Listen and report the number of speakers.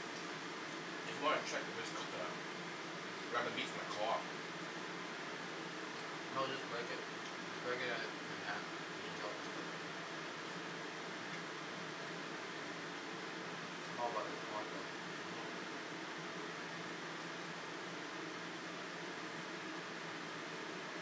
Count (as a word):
two